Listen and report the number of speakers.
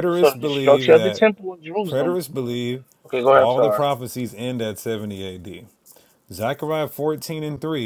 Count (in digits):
2